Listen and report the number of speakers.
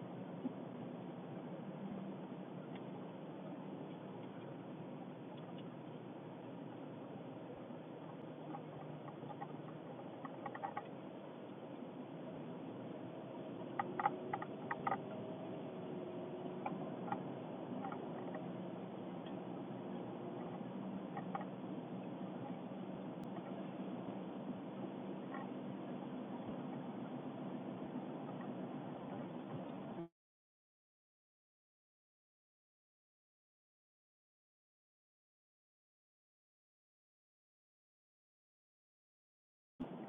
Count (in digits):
0